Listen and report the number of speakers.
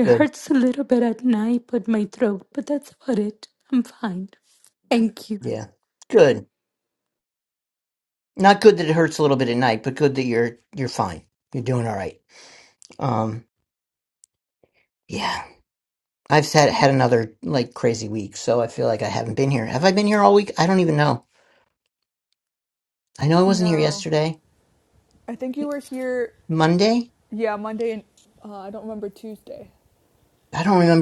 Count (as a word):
three